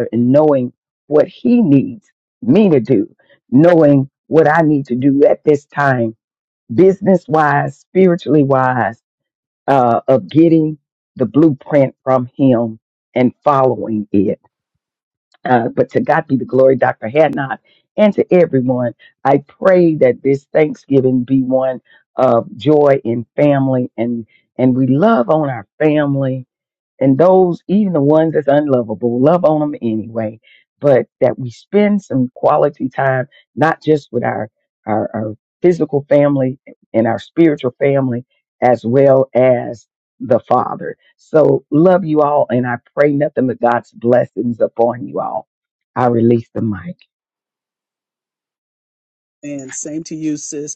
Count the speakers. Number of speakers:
2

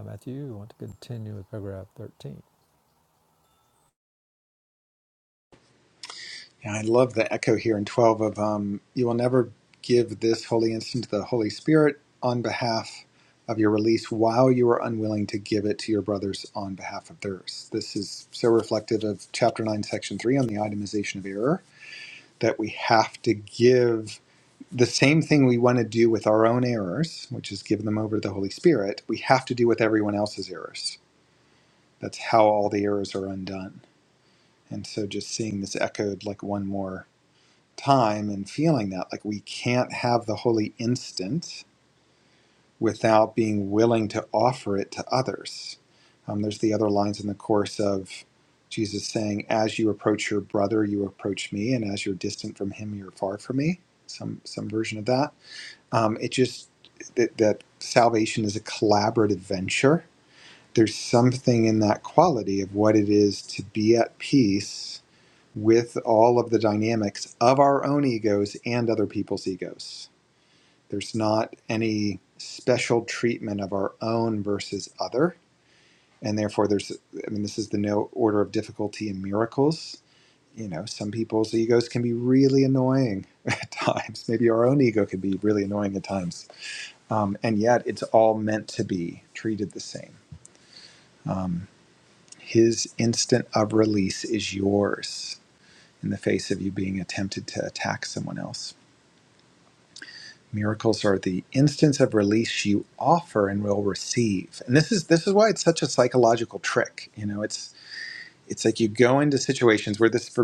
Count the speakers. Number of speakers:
2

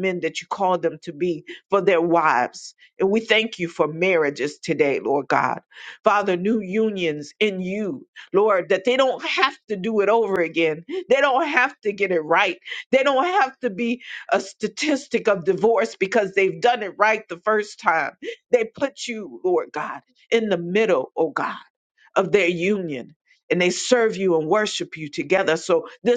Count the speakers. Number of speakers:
1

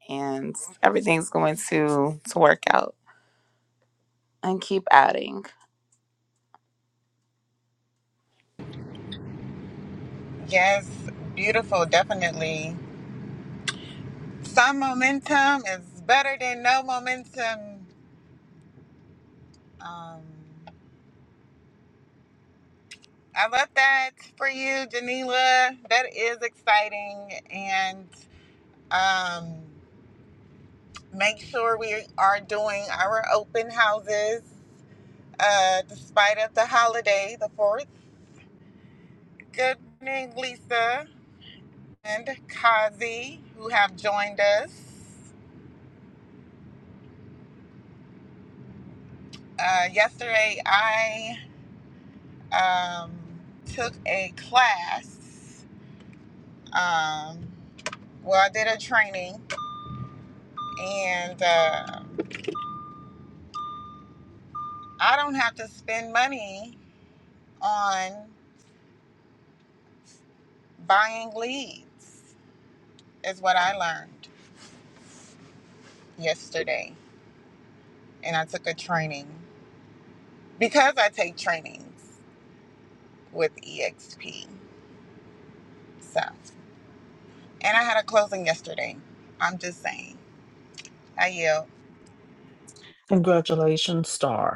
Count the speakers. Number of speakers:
3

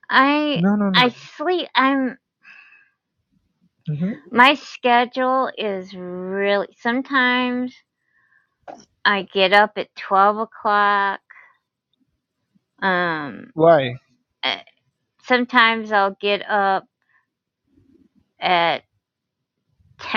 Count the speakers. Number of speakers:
2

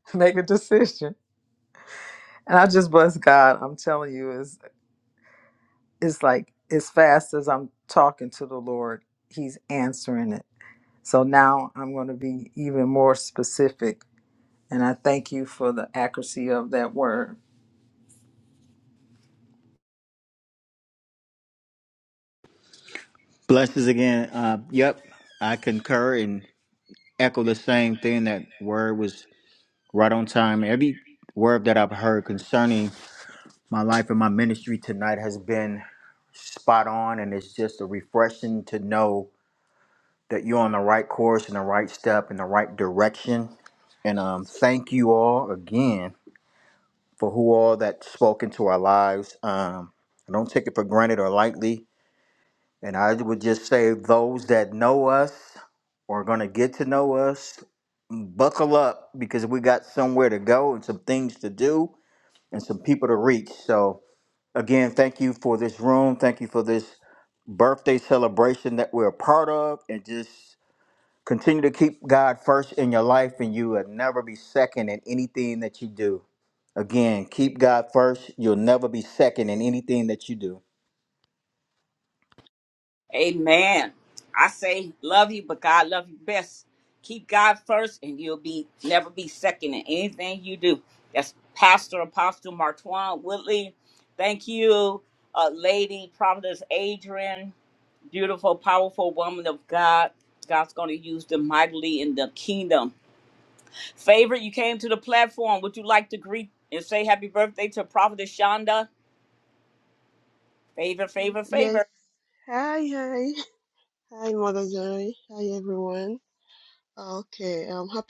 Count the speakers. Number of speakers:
4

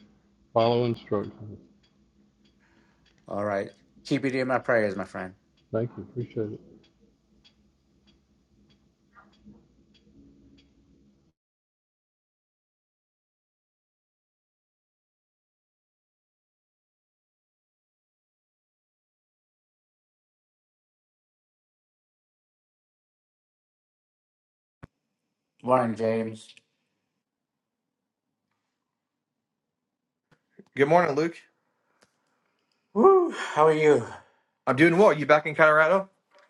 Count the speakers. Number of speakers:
3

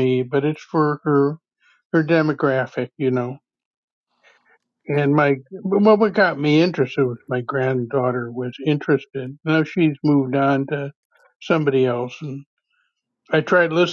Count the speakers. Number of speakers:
1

